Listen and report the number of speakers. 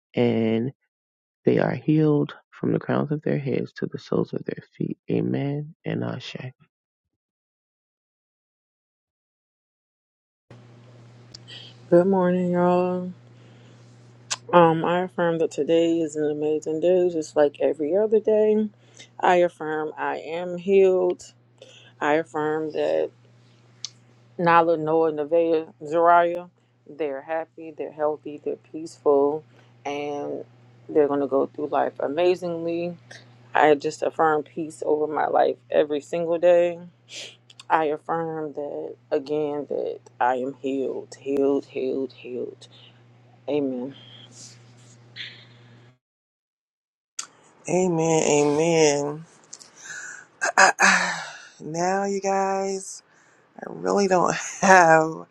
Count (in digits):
3